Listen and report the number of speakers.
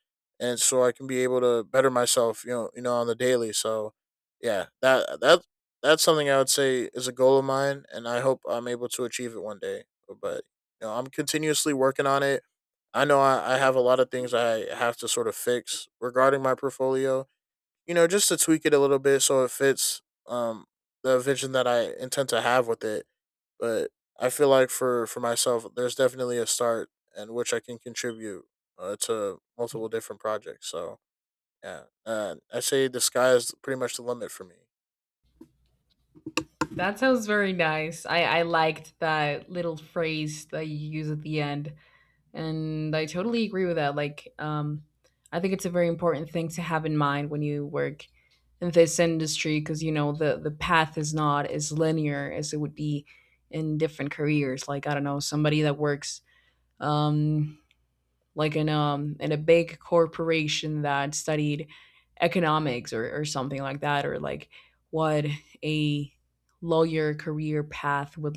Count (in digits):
2